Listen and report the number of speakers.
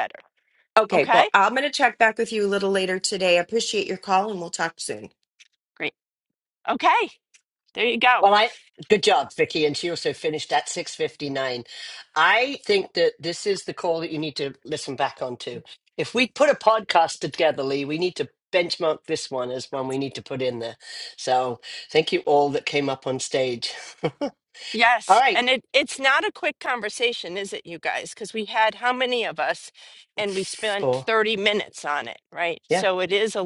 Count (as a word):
three